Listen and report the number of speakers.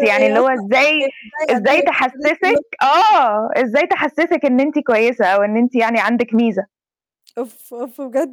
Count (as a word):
two